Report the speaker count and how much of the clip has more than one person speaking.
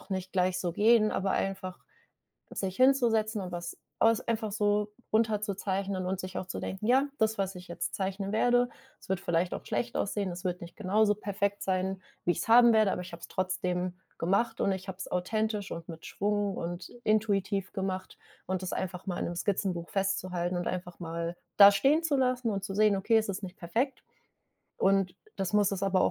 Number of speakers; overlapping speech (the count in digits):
1, no overlap